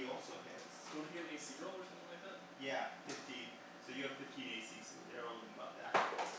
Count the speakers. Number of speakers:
2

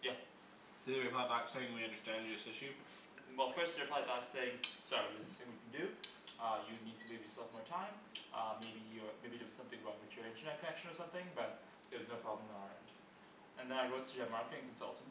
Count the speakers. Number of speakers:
2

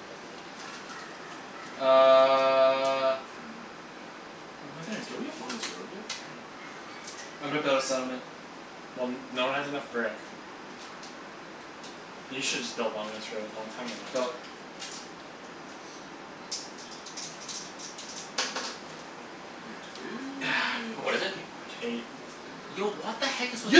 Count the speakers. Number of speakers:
4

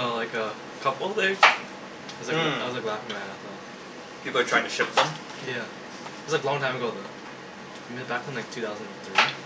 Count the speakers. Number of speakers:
2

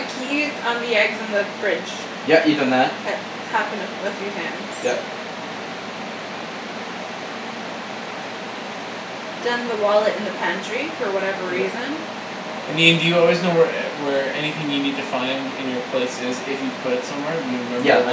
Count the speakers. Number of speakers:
3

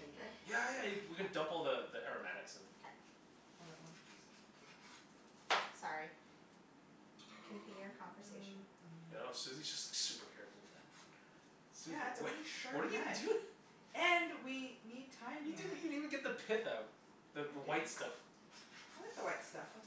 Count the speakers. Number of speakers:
3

